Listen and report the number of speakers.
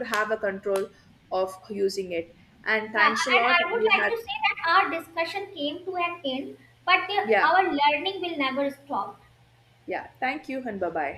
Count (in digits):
2